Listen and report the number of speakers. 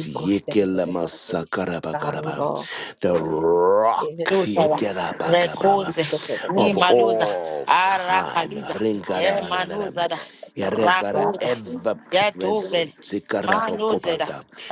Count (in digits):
3